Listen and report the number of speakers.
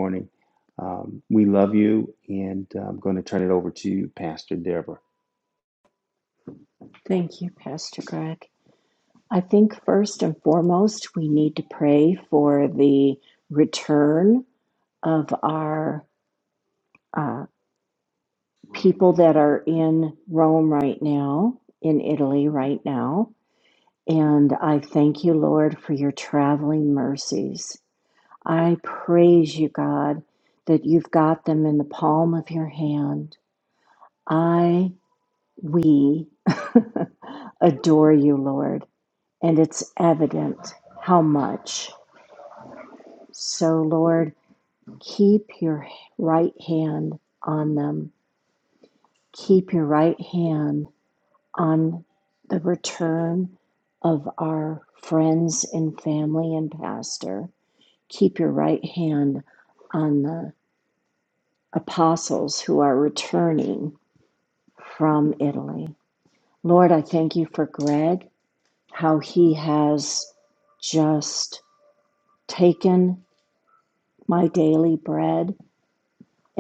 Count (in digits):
2